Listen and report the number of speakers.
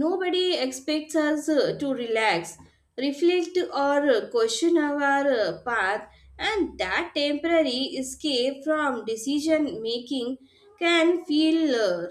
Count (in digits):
1